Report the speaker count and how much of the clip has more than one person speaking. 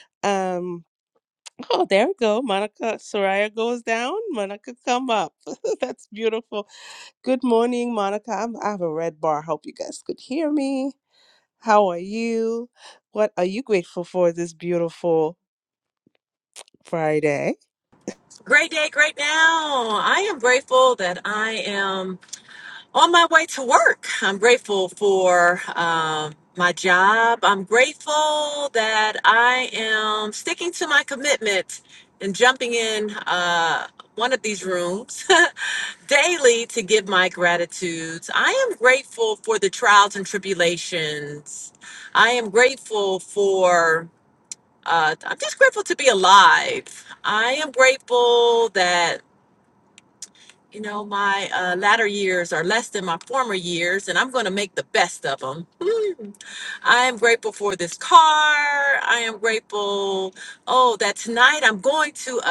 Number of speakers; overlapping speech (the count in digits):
2, no overlap